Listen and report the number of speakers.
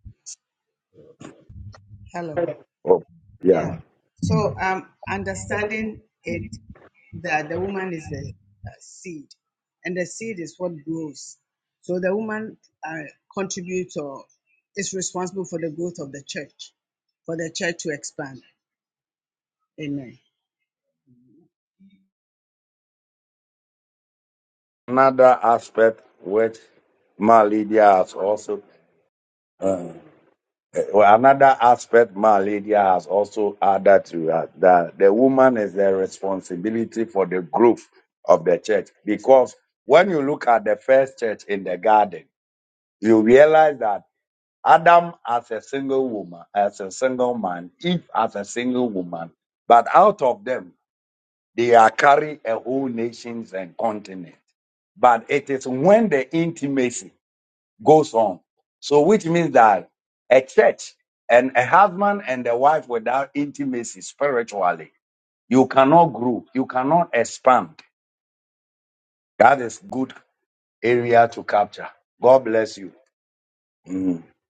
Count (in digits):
2